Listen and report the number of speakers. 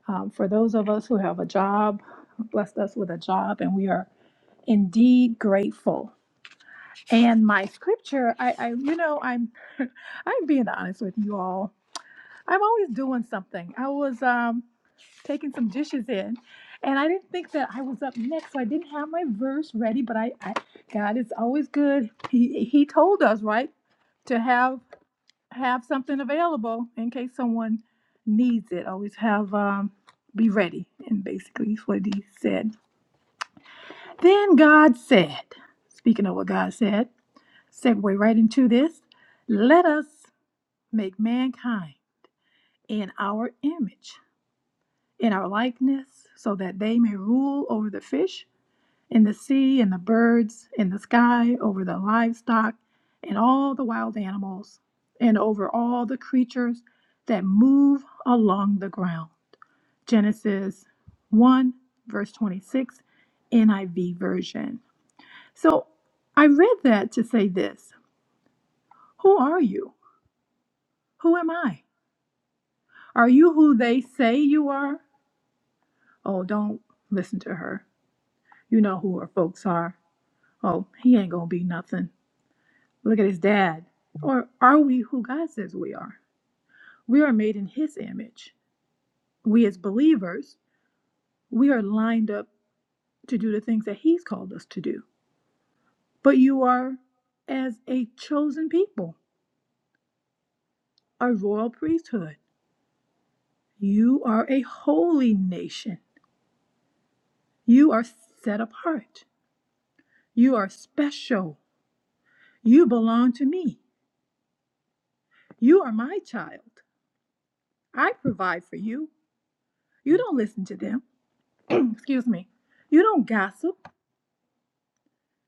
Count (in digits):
1